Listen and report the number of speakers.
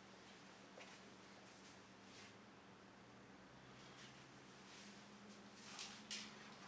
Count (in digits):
0